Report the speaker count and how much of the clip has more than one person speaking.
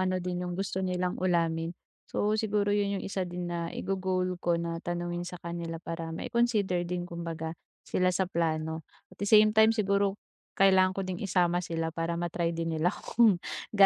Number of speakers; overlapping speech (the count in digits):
1, no overlap